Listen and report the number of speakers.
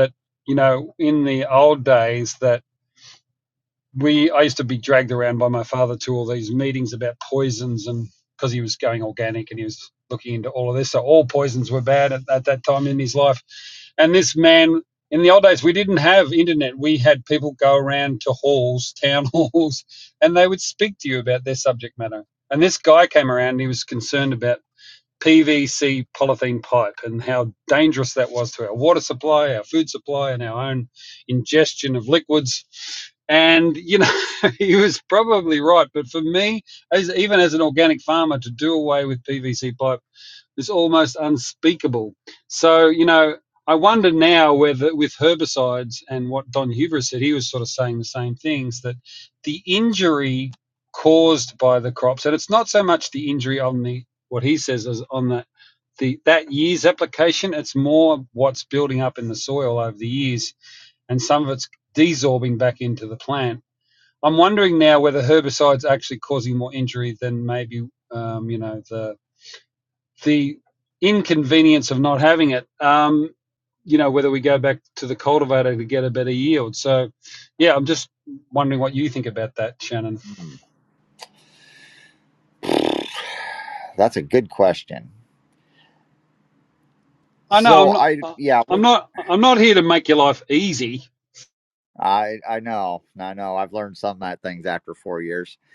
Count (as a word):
two